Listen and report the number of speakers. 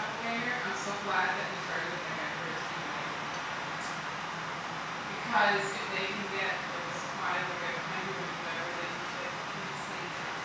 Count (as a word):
one